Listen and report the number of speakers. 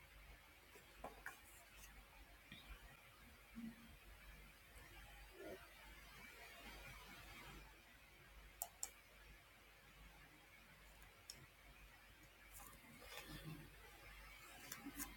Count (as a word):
zero